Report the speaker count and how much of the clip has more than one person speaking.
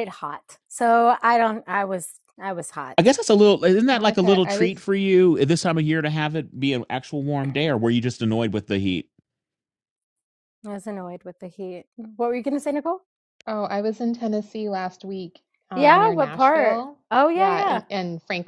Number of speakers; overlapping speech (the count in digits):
3, about 14%